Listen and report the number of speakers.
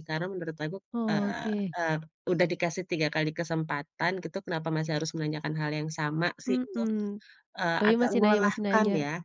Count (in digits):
2